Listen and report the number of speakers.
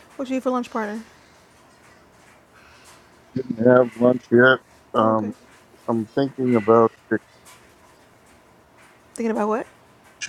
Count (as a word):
two